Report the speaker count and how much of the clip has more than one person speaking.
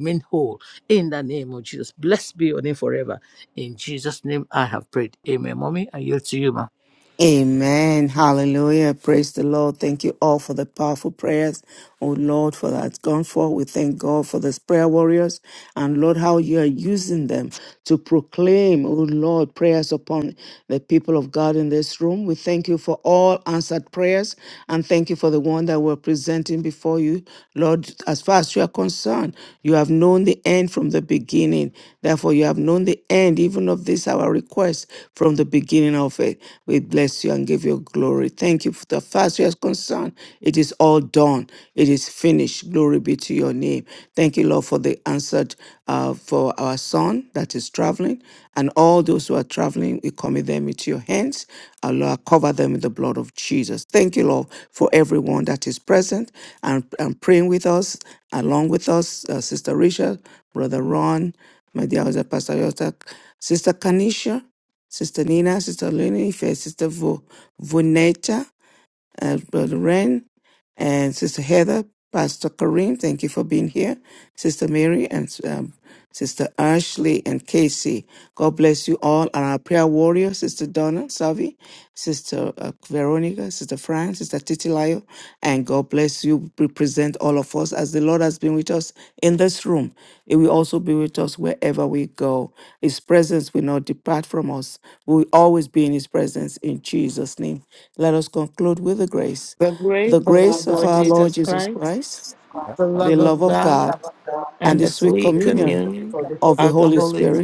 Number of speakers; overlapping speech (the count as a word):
four, about 5%